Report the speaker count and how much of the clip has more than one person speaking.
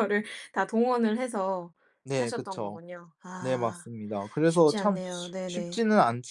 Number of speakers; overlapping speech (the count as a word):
two, about 28%